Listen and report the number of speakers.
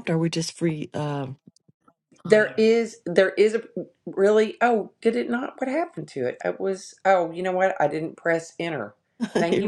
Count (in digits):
2